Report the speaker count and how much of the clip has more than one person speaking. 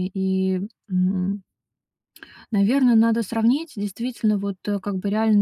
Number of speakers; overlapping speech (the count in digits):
1, no overlap